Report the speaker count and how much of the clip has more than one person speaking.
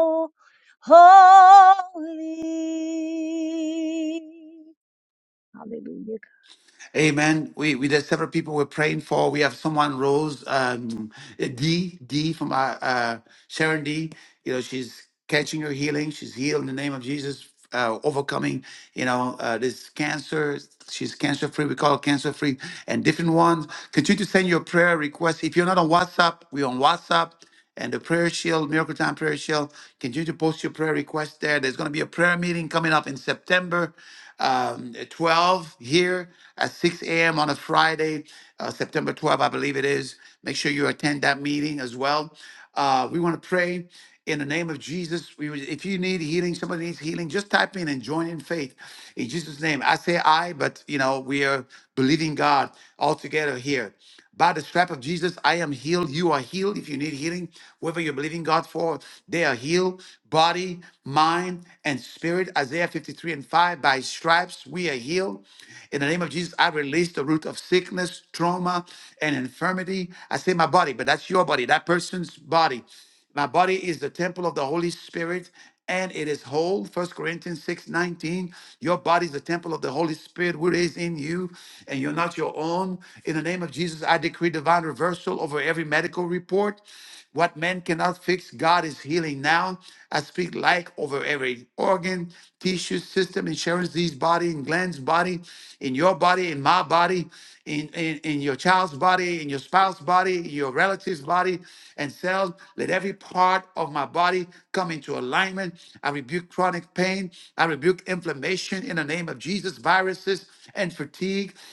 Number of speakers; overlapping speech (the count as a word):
two, no overlap